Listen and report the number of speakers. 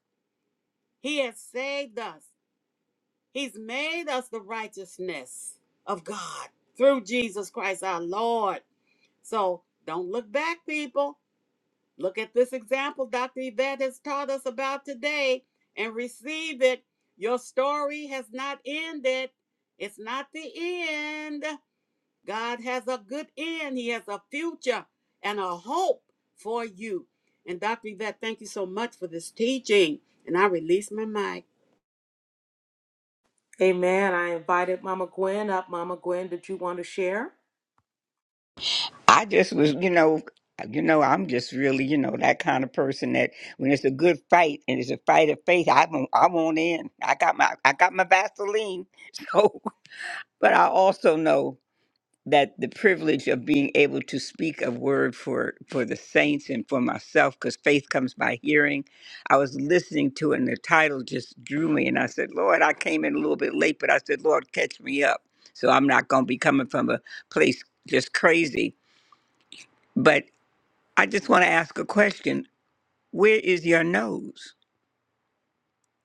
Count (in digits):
3